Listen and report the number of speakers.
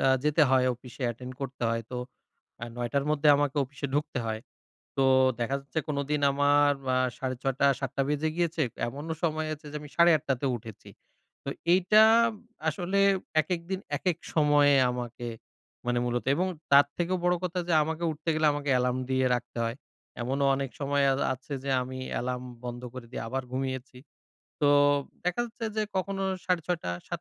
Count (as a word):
one